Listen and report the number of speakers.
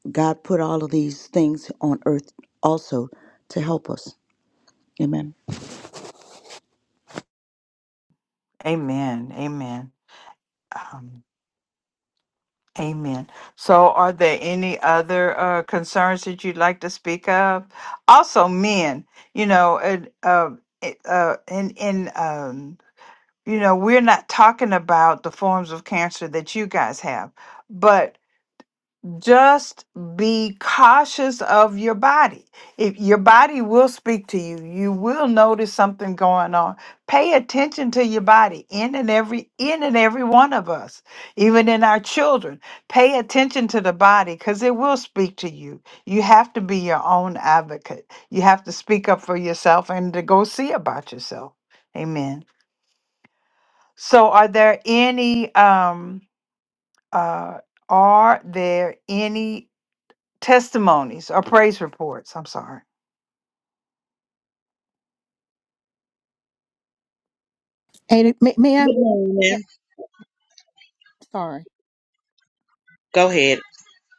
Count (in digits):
4